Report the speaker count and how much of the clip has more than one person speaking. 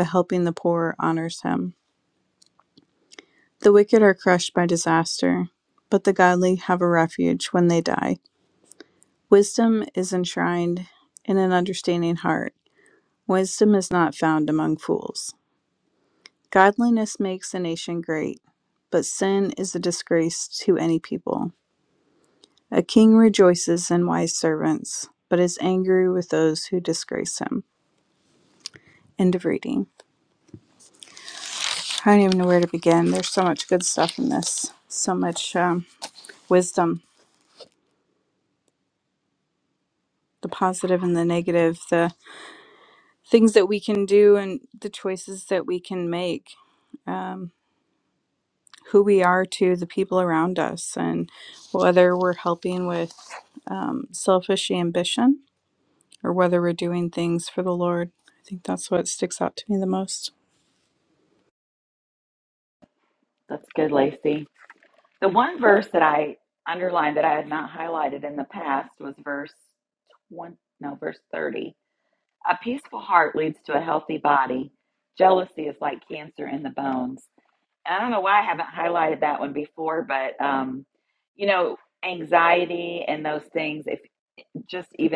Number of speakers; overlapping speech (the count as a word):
two, no overlap